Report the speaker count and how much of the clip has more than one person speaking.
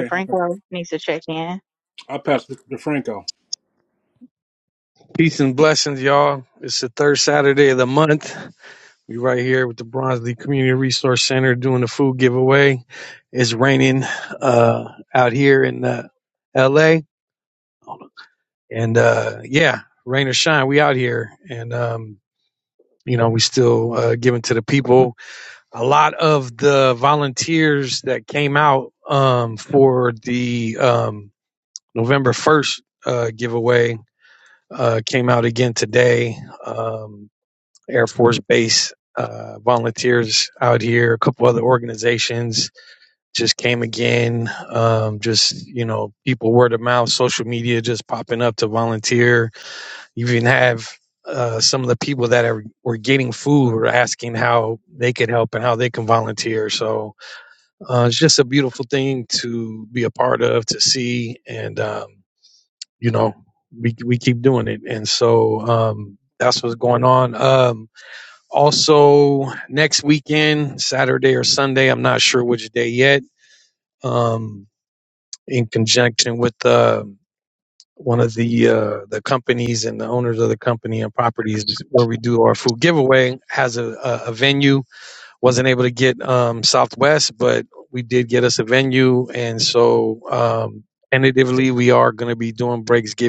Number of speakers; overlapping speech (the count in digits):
3, under 1%